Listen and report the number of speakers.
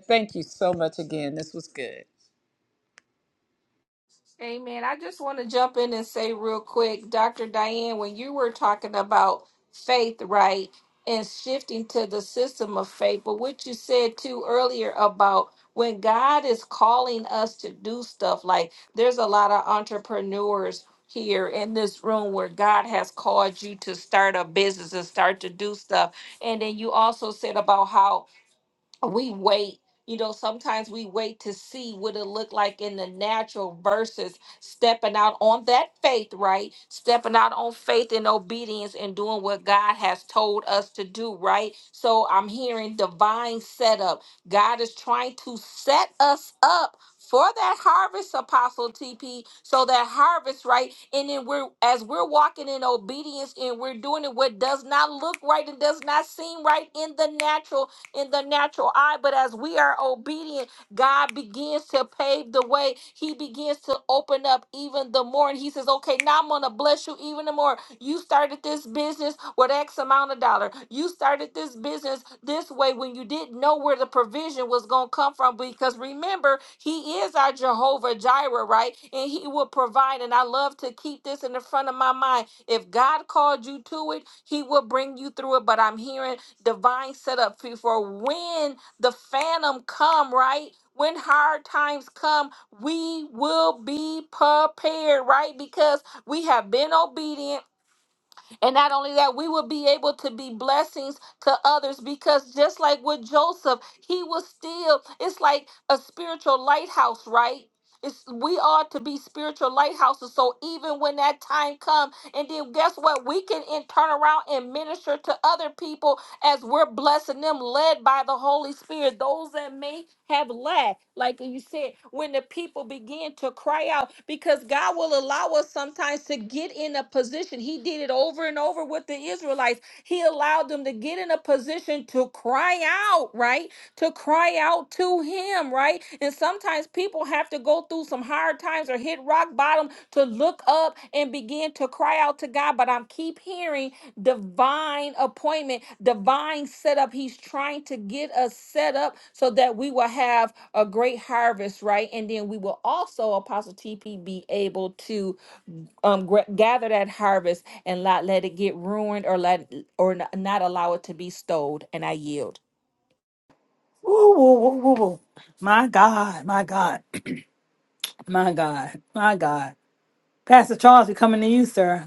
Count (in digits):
3